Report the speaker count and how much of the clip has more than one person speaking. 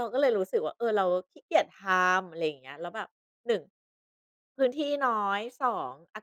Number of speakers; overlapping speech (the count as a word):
one, no overlap